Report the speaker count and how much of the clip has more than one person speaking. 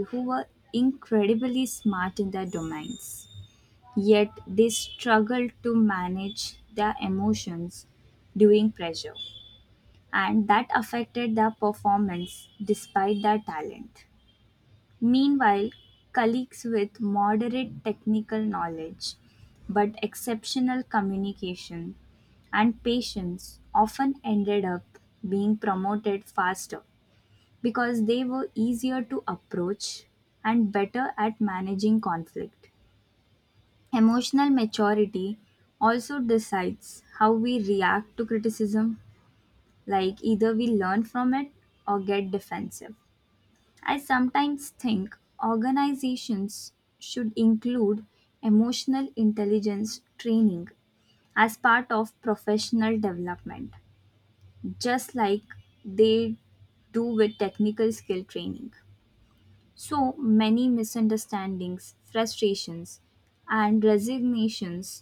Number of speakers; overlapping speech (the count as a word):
one, no overlap